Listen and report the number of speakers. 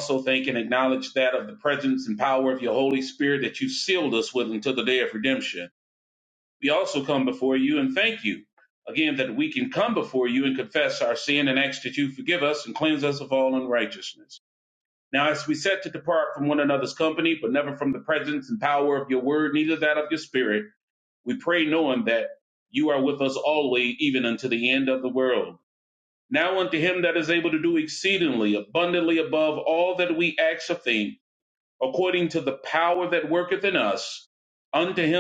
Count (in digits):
1